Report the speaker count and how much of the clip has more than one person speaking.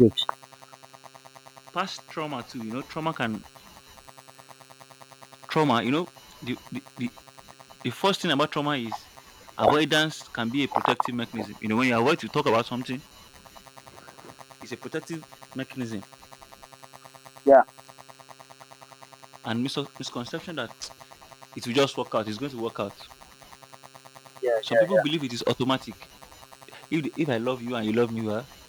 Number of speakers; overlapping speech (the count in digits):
2, about 2%